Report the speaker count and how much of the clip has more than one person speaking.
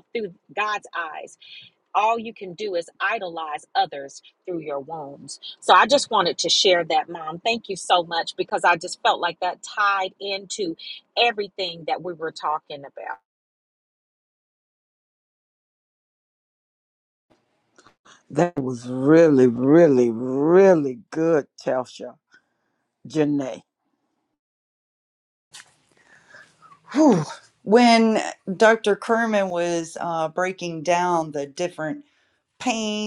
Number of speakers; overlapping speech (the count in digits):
3, no overlap